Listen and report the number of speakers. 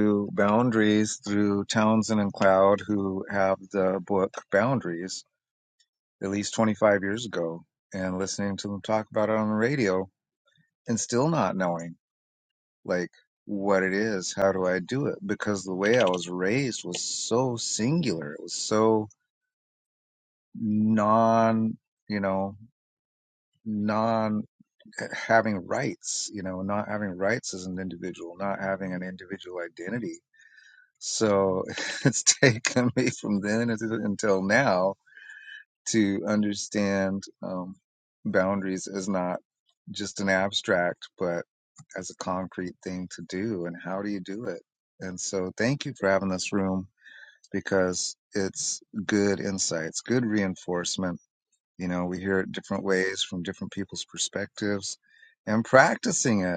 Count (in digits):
1